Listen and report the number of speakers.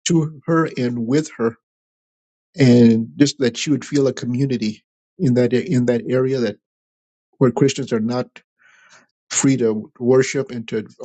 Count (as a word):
one